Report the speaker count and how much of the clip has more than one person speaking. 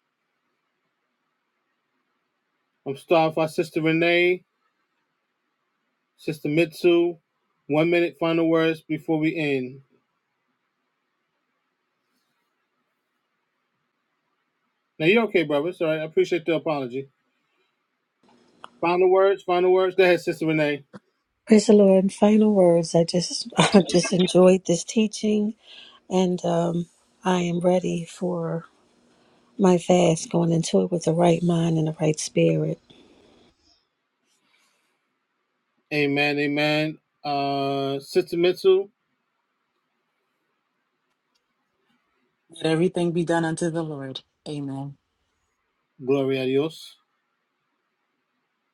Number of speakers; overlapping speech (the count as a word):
three, no overlap